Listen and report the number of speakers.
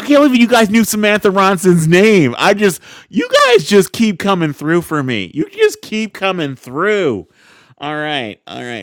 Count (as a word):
one